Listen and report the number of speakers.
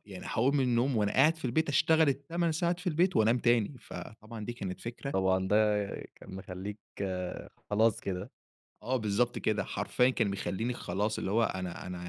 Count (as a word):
two